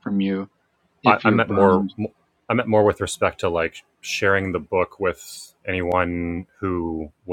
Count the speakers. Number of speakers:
two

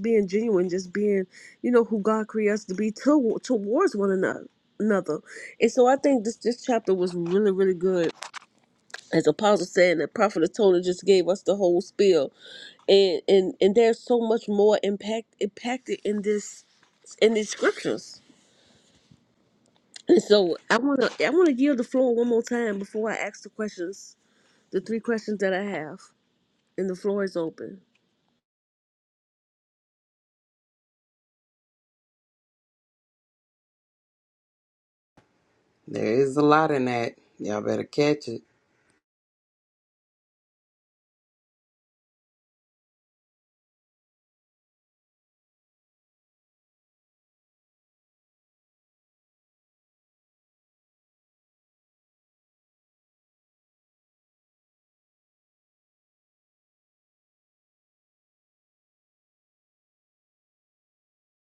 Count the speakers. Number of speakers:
two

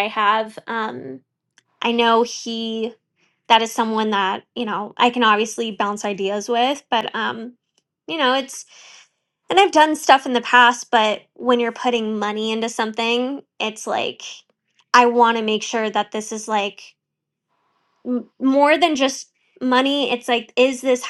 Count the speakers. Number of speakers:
one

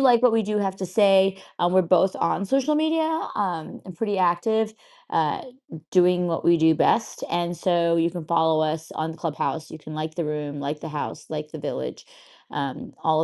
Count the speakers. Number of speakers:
one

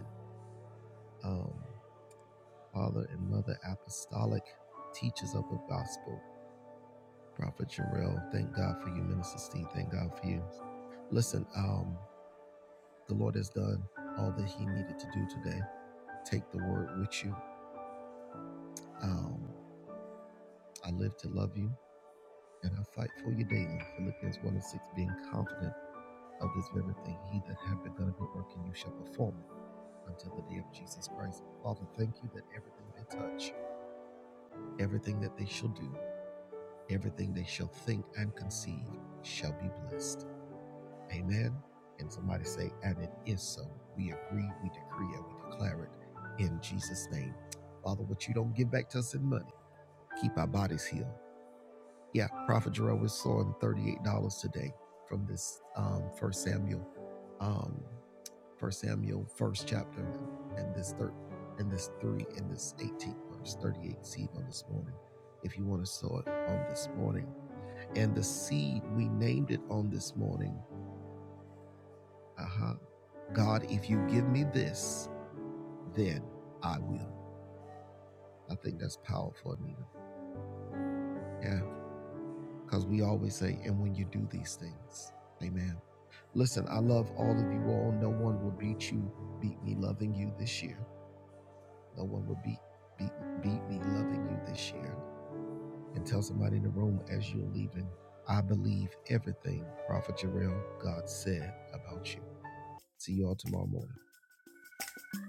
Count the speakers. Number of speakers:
one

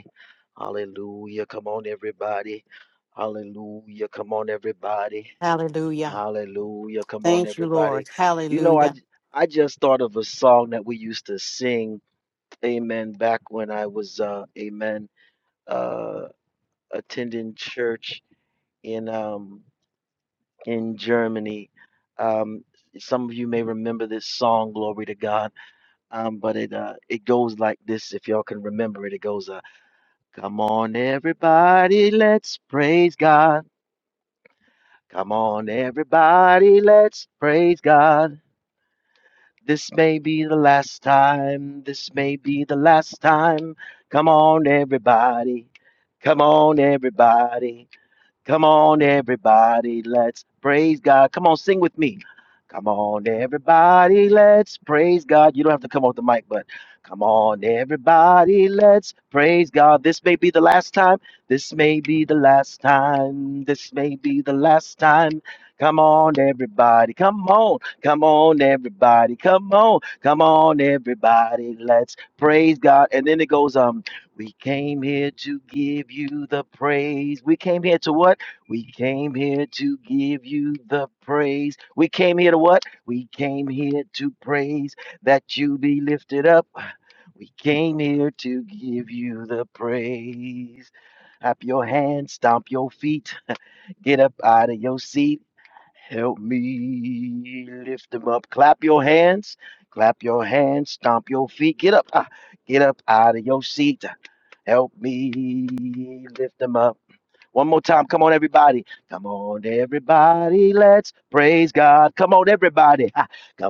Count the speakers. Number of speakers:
two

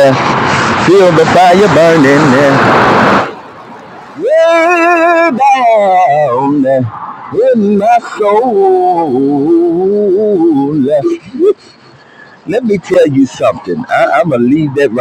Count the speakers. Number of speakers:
one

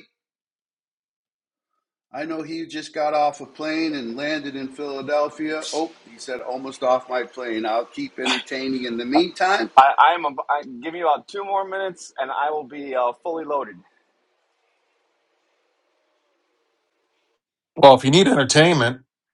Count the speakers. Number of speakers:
three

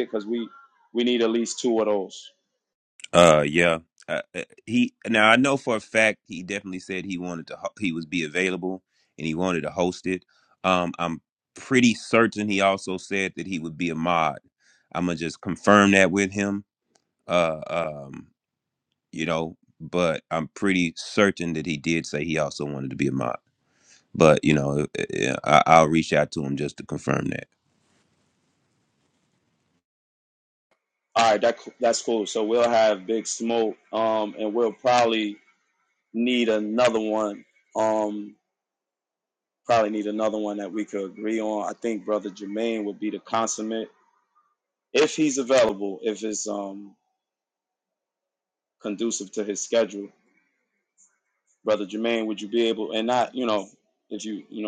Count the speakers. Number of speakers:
two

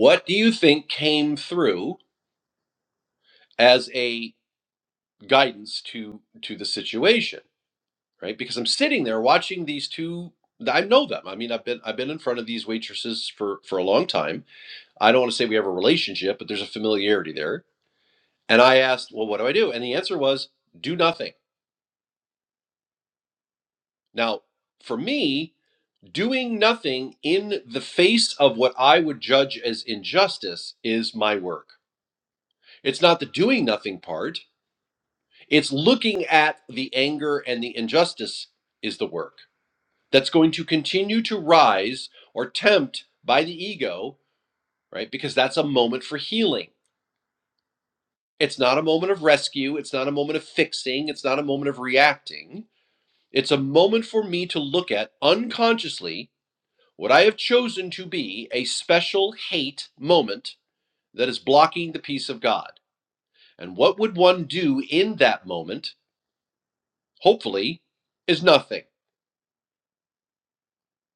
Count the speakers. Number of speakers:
one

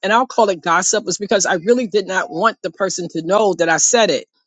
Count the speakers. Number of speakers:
one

